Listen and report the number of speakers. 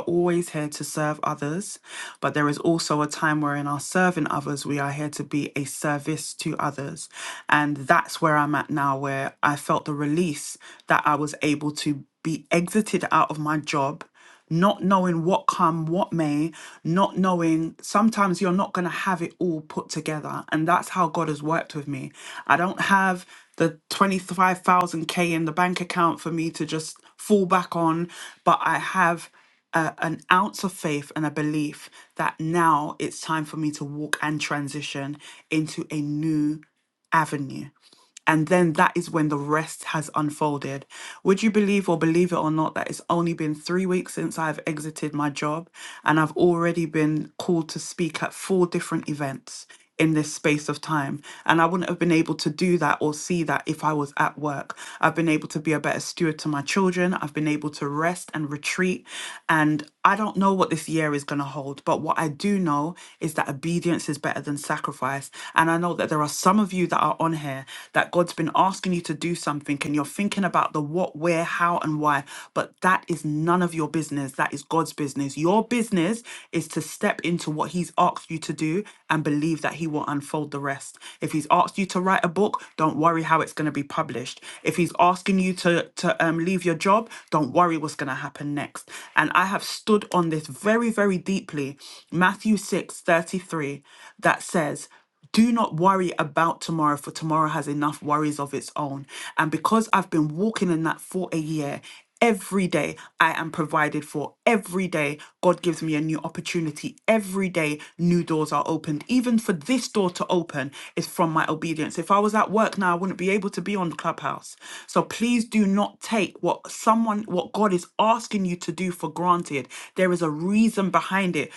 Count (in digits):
1